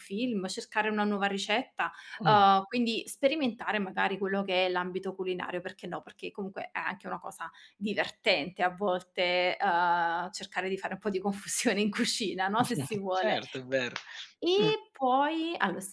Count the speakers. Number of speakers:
two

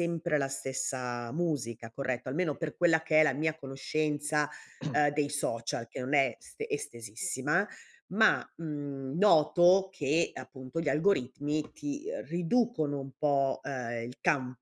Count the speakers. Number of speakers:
one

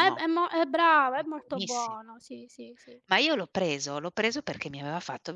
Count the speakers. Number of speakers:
two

